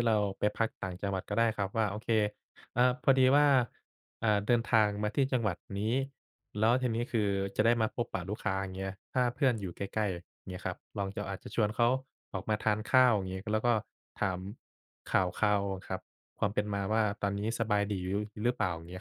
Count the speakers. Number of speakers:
1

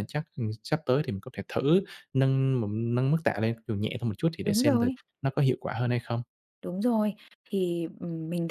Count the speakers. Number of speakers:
2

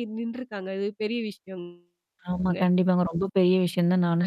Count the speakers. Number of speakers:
2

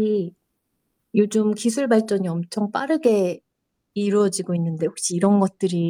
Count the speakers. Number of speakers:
1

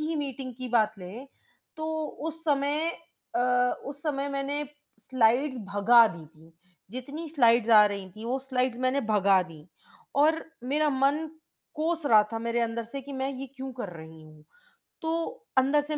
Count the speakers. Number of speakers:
1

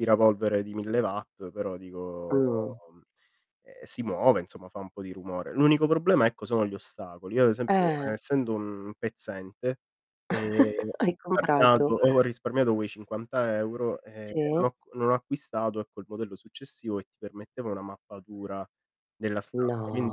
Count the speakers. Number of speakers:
2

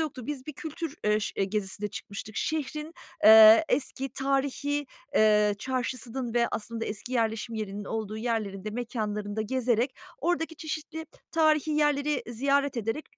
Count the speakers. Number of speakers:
1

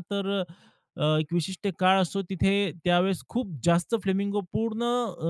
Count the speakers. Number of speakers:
1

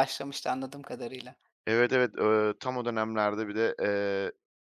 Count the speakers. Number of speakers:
2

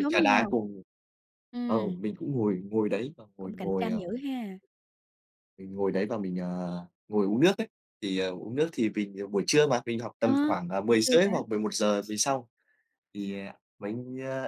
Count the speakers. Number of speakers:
2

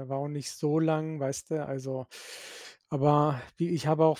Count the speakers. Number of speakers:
1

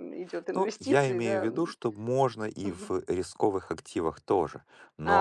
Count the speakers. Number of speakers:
2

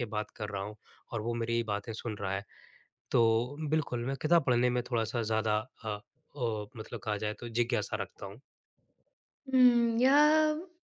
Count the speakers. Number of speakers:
2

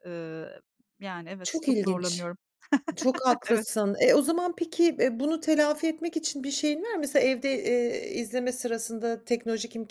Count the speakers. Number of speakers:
2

